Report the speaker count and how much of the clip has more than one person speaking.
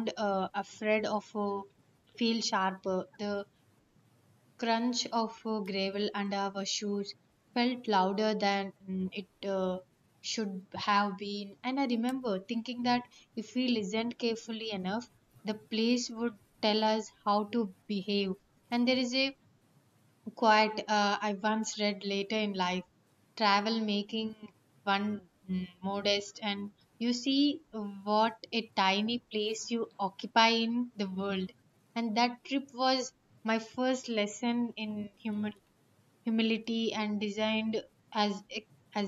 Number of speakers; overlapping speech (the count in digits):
1, no overlap